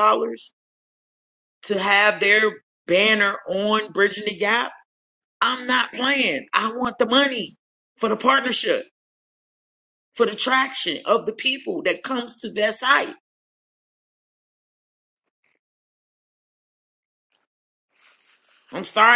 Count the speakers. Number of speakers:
1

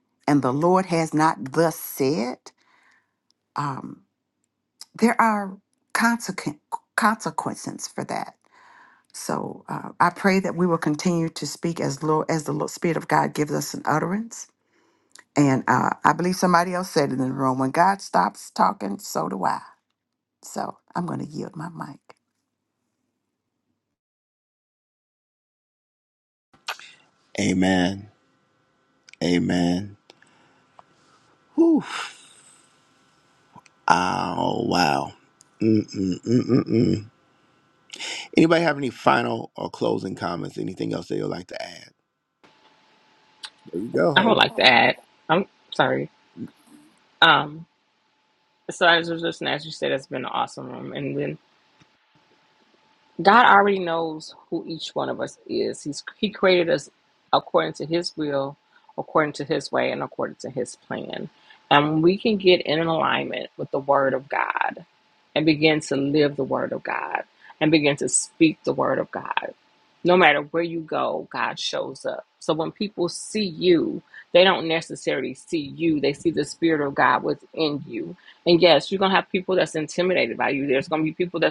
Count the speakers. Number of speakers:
3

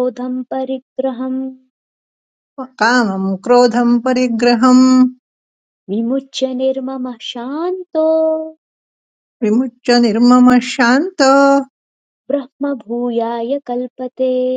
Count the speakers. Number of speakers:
2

